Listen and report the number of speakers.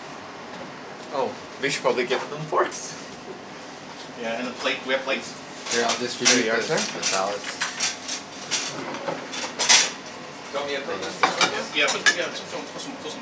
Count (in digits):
3